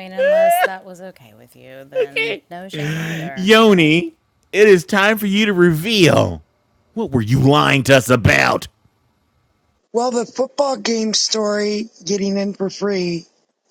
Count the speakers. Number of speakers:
3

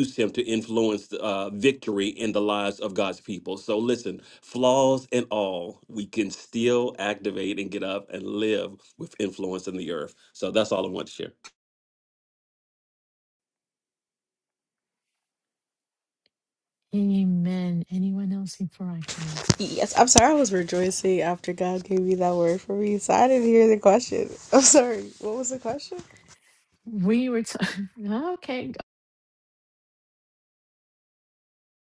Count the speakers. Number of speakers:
3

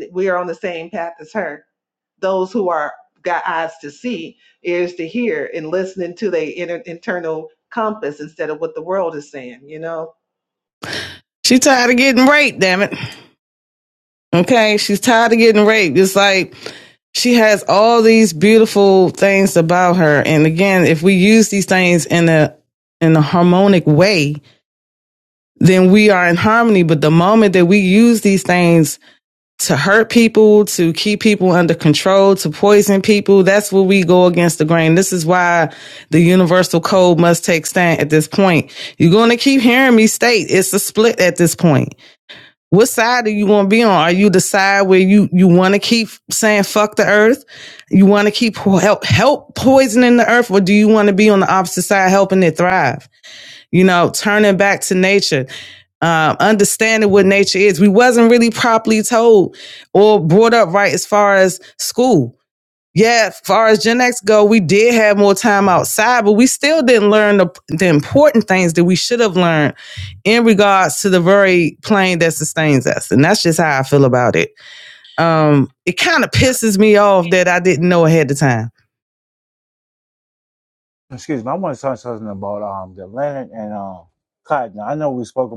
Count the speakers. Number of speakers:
3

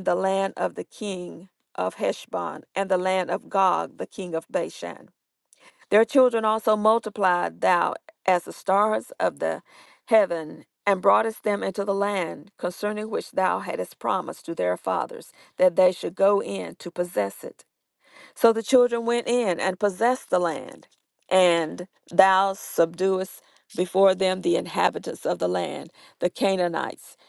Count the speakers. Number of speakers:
1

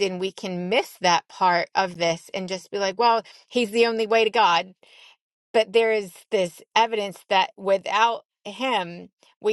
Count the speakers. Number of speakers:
1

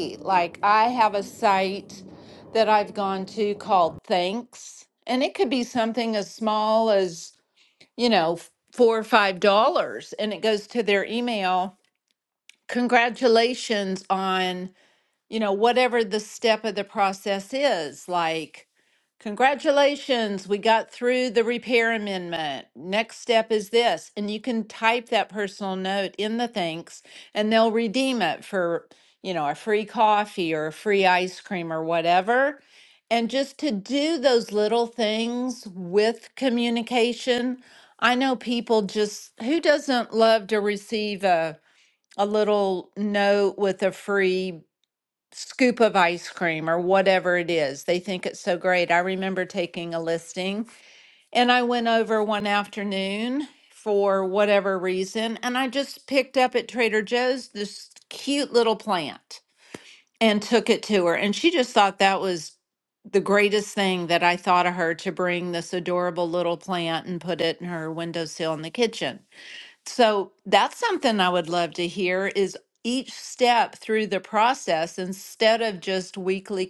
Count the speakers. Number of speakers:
1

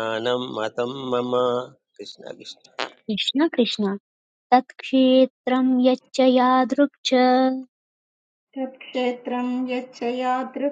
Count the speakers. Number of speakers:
3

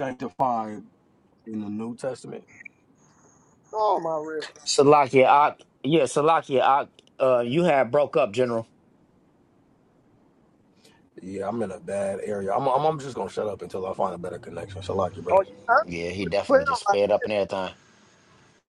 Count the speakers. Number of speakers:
3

